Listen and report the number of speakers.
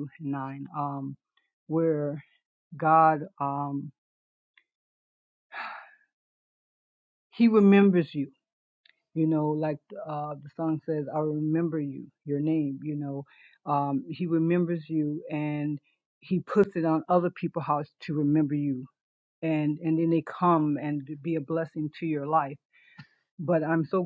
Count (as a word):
one